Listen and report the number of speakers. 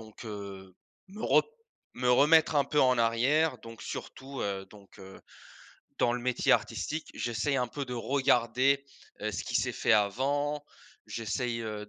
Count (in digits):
1